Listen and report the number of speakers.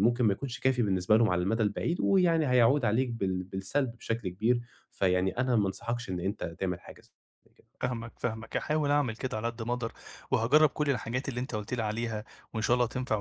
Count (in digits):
2